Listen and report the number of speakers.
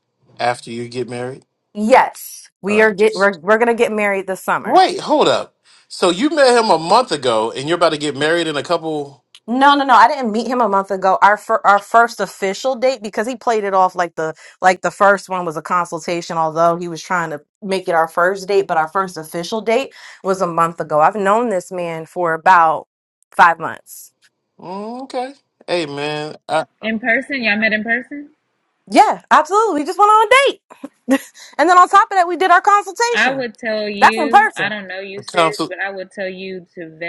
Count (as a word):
three